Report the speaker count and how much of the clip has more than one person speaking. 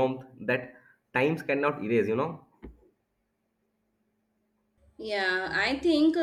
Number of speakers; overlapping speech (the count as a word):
two, no overlap